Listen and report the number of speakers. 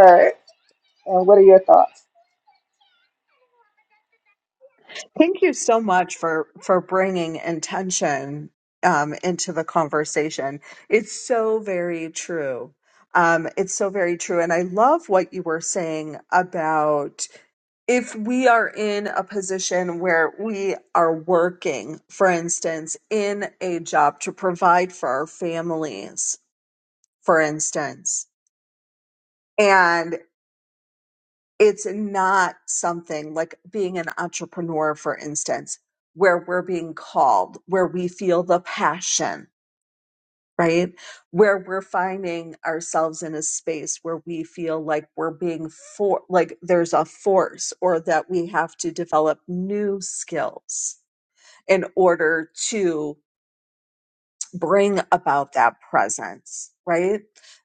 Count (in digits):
2